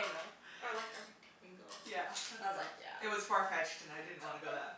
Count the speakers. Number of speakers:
2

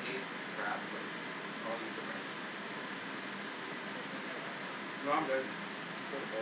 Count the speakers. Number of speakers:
1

